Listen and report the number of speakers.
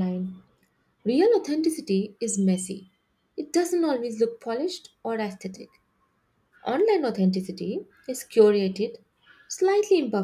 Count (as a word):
one